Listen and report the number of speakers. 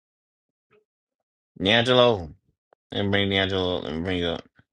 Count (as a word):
one